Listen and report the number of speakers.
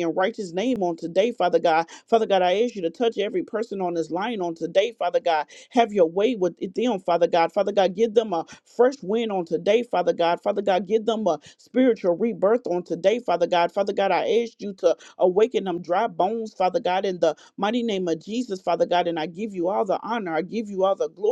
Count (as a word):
one